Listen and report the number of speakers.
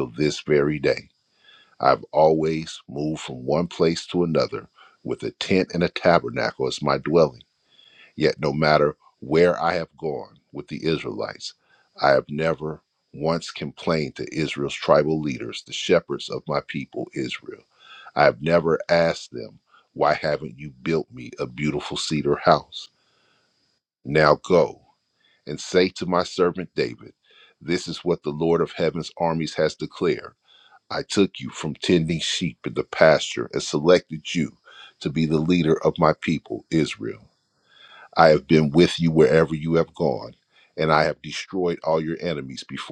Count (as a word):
one